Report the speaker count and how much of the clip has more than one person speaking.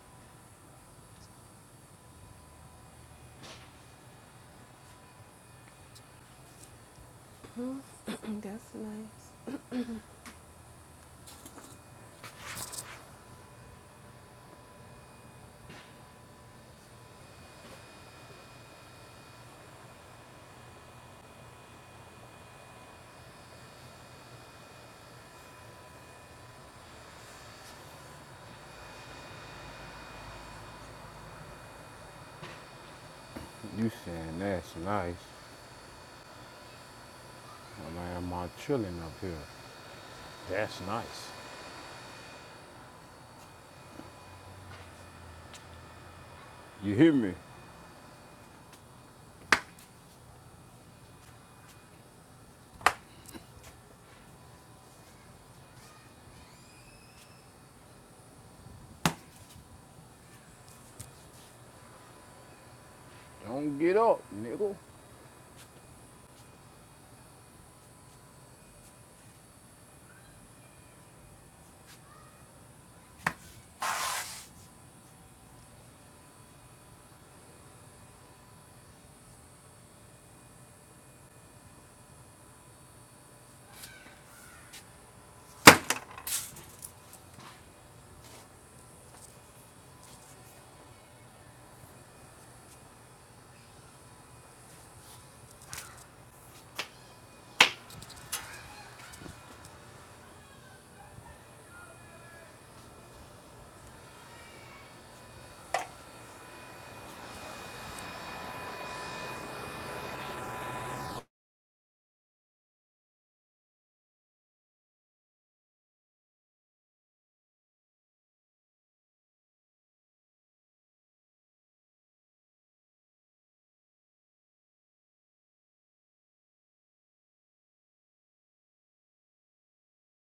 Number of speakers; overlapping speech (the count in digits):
2, no overlap